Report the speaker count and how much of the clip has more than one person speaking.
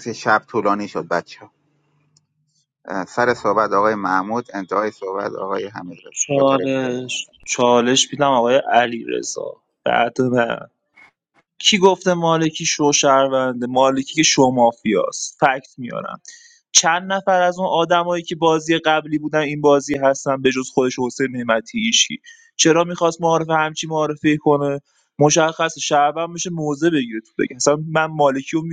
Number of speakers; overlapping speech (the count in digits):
2, about 3%